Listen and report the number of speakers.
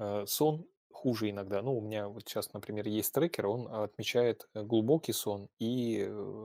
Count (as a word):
one